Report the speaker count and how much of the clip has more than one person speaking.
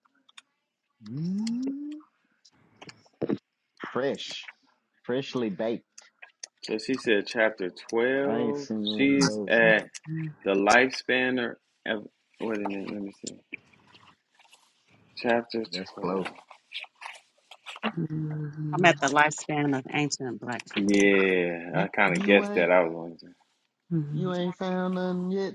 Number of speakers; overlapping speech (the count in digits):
4, about 14%